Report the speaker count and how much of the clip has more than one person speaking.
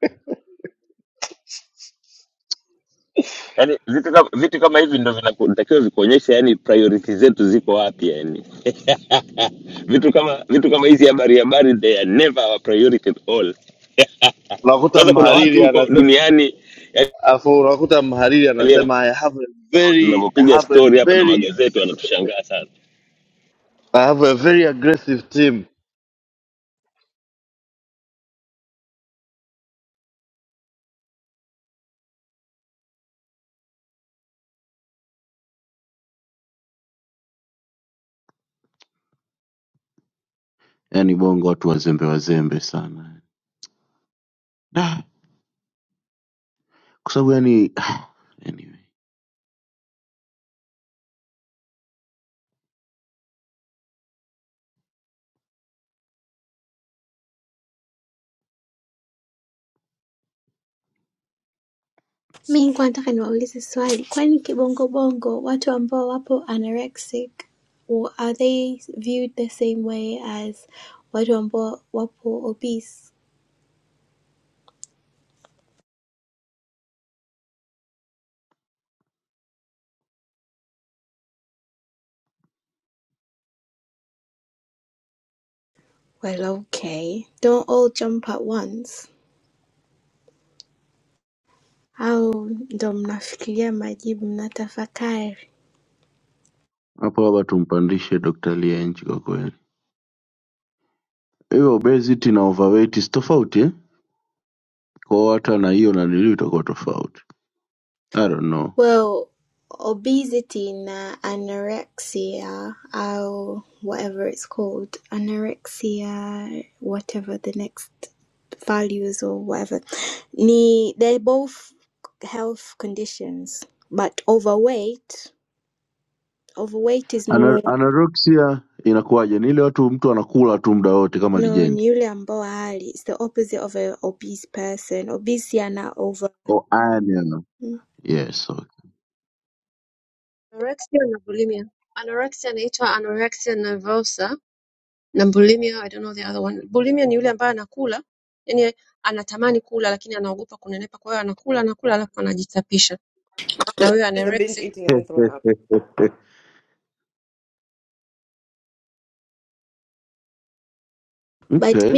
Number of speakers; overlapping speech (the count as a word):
six, about 3%